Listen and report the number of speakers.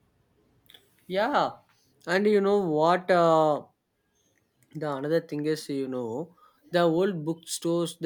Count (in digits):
1